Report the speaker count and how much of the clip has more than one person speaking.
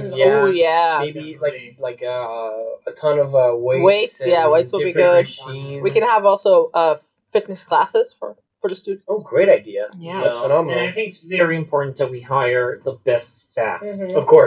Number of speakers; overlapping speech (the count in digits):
3, about 33%